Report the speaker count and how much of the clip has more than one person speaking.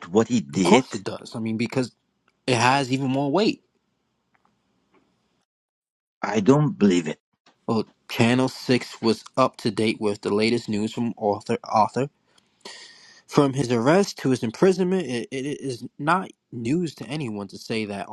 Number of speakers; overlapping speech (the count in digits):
2, about 2%